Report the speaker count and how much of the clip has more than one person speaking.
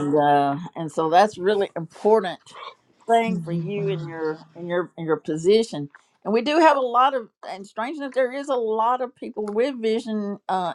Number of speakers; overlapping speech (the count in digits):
1, no overlap